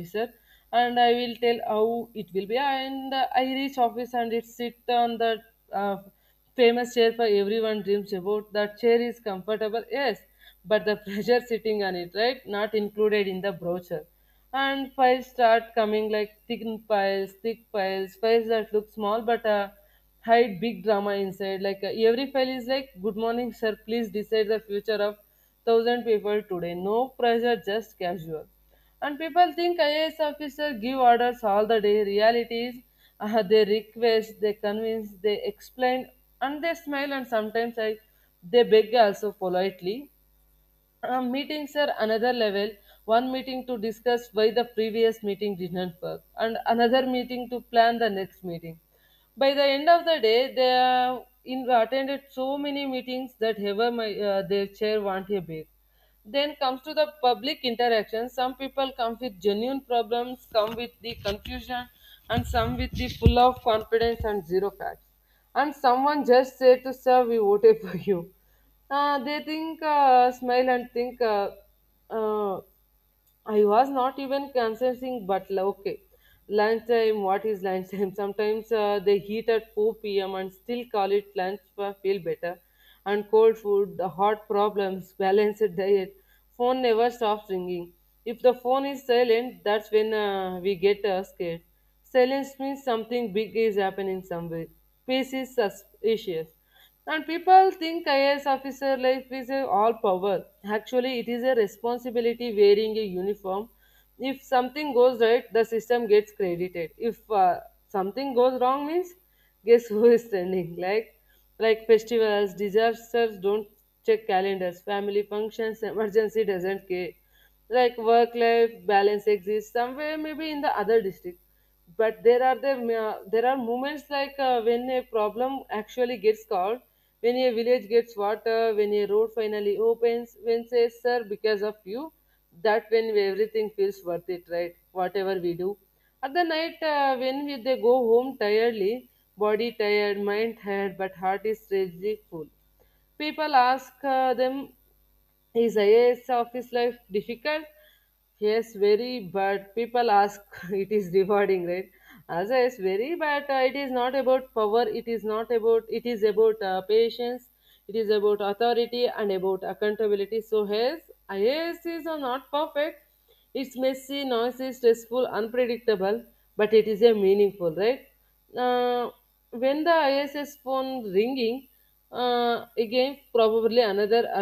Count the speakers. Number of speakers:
1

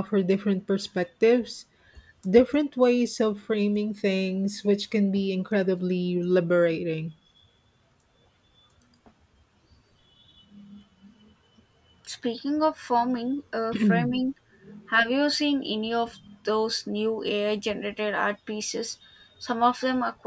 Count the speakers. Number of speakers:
2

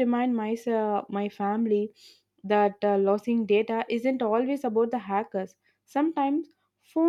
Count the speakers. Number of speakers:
1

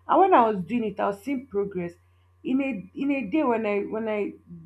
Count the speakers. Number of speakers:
1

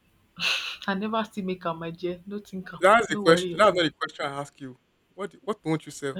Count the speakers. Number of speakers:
2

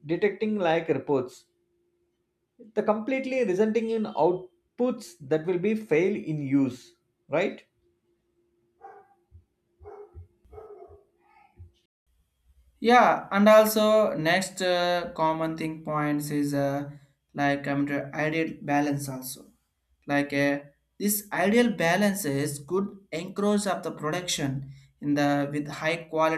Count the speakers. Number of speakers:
2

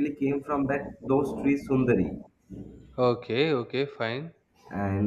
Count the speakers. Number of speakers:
2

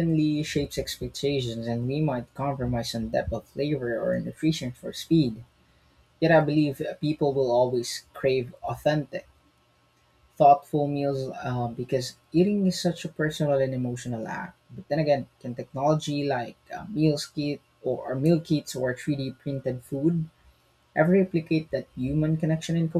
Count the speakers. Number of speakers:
1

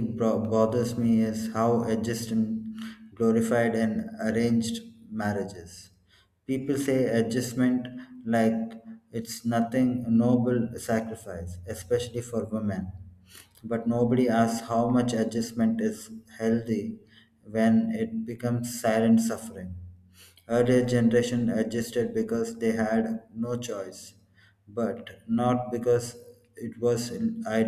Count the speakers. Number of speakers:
1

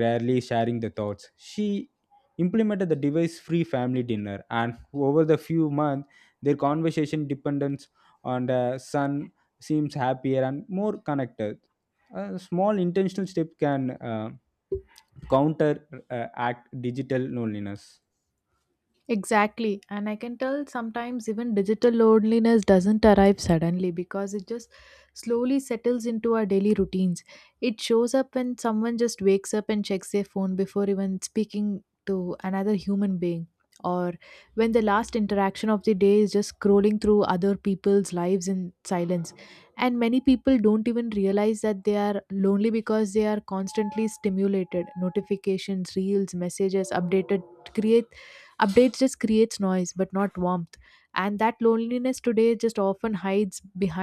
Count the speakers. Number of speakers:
2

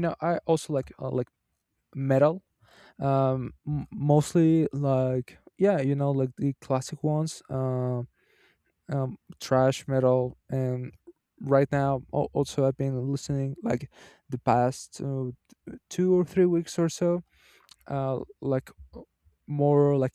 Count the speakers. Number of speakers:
1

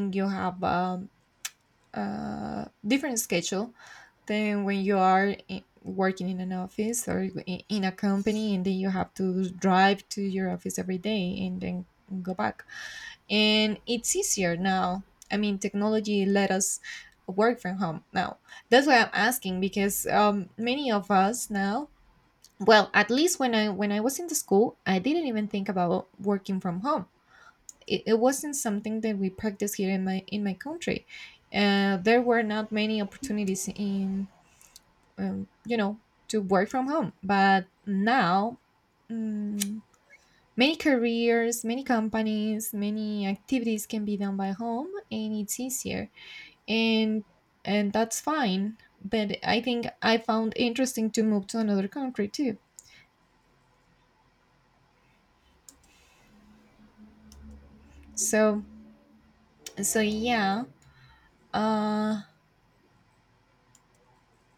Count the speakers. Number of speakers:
1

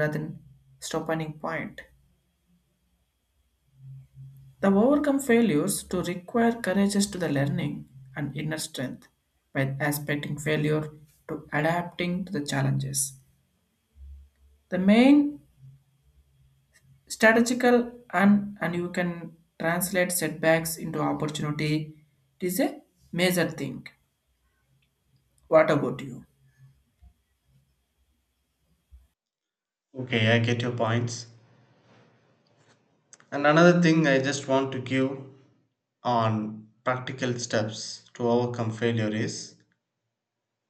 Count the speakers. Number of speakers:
2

